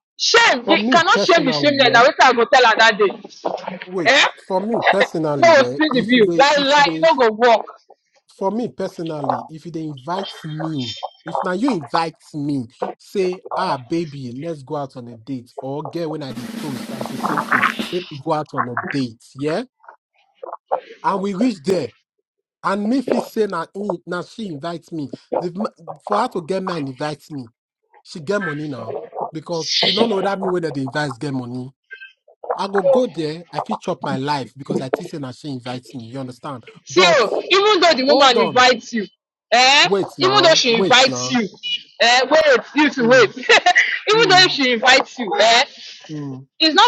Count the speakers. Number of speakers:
2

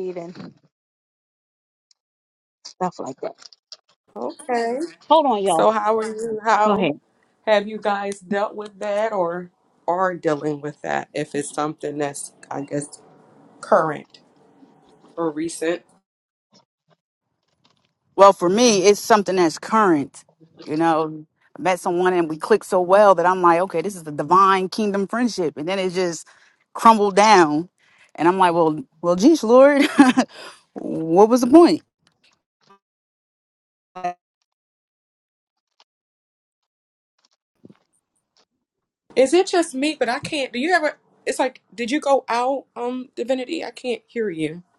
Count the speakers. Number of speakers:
3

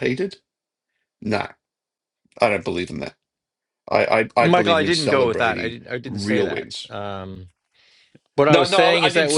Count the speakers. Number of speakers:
2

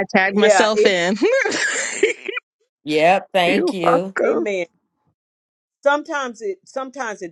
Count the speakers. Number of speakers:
3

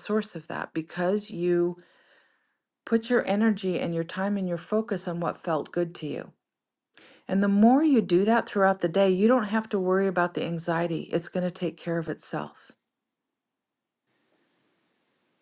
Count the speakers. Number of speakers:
1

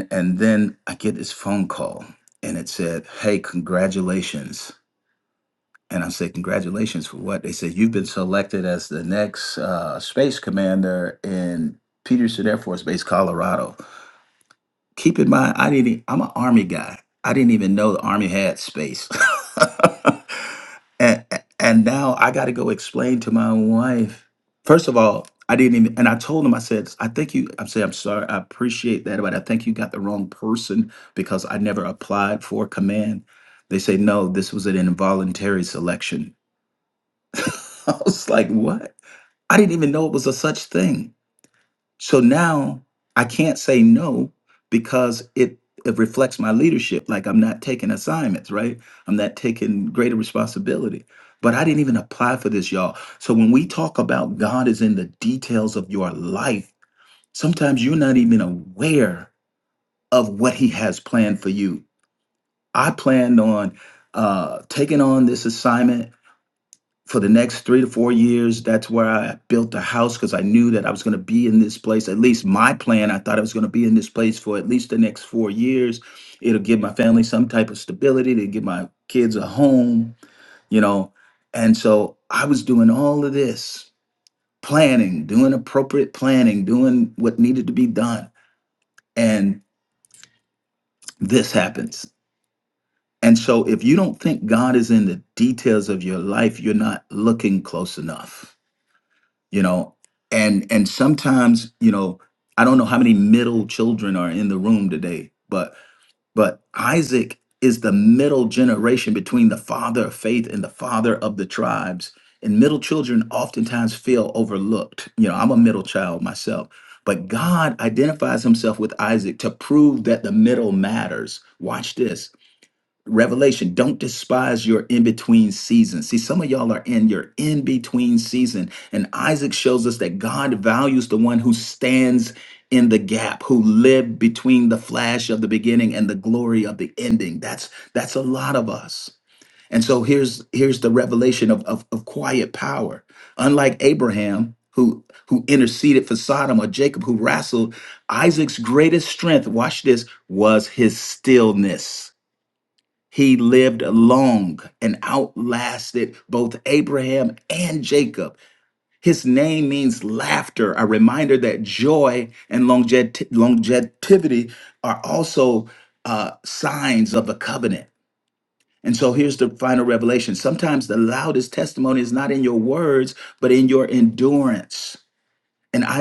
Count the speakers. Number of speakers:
1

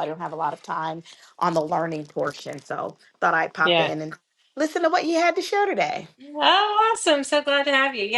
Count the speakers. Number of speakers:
2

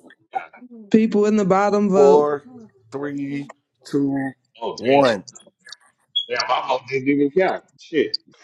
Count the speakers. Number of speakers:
3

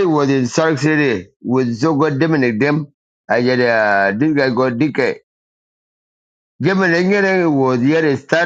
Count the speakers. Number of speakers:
1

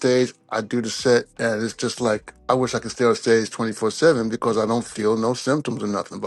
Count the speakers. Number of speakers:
1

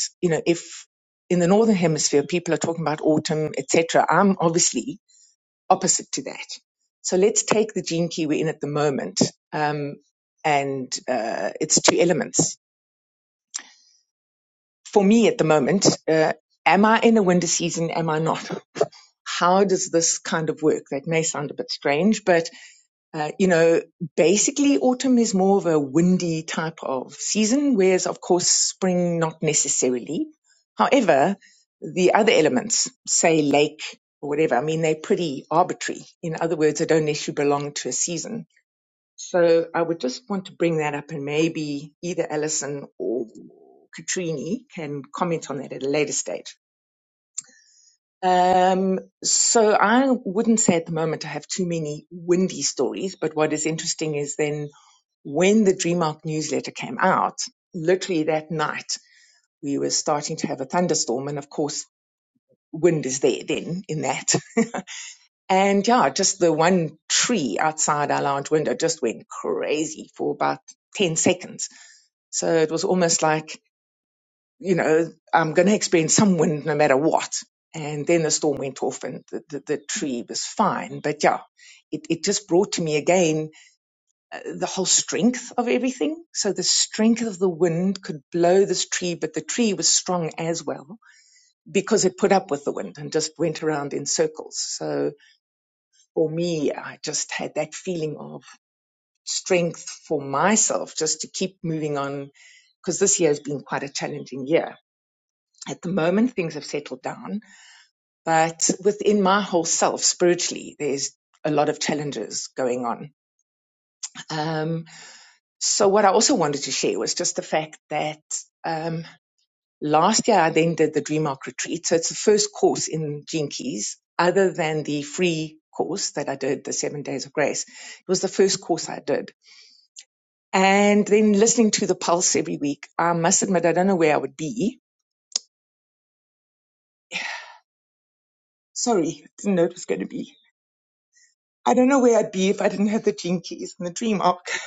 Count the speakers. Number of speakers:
1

